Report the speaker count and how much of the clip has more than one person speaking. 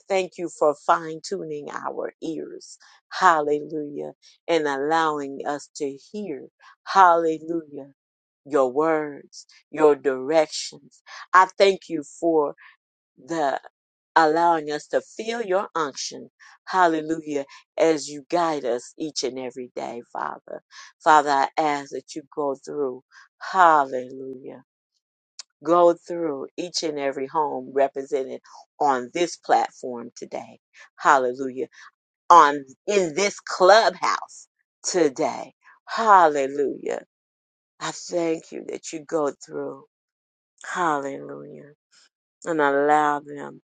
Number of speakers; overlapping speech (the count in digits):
1, no overlap